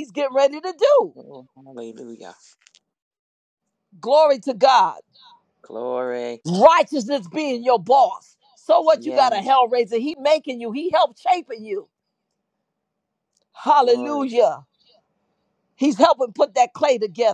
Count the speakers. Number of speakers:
2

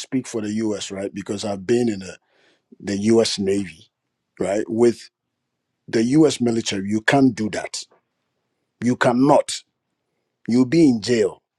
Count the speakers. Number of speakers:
1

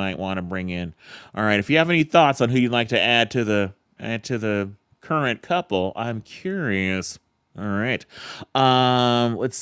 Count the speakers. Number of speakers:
1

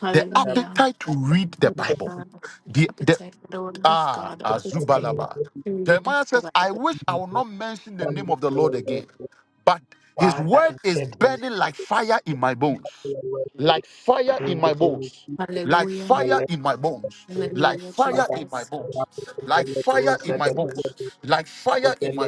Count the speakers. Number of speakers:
3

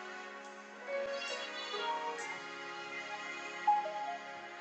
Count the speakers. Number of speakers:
0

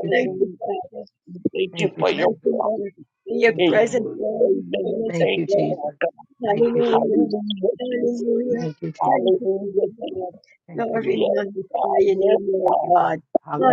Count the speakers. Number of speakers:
3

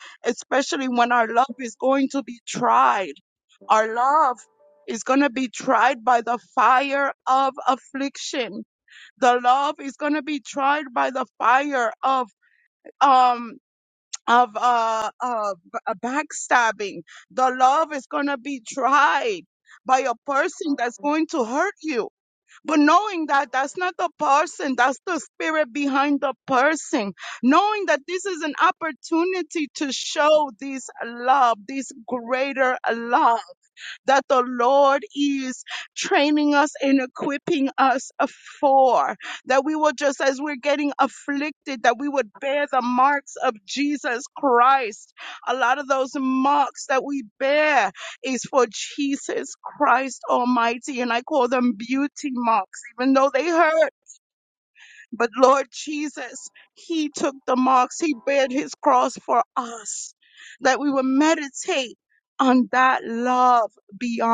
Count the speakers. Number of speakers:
1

